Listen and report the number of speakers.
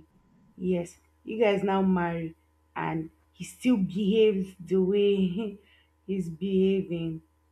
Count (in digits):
1